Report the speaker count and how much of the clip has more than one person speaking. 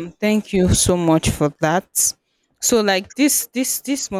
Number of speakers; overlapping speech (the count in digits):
1, no overlap